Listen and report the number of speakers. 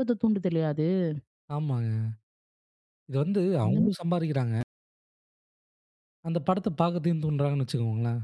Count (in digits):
2